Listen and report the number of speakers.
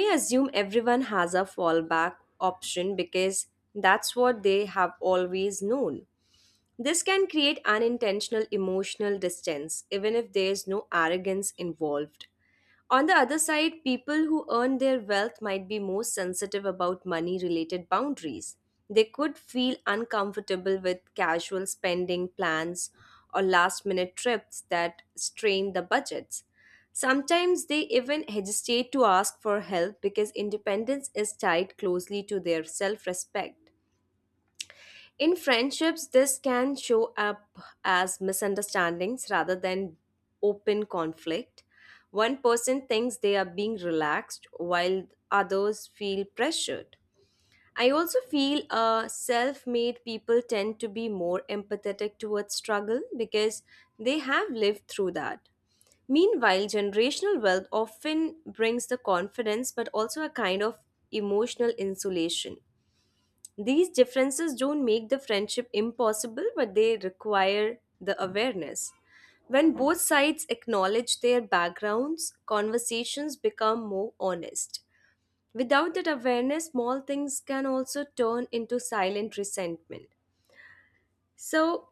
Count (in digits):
1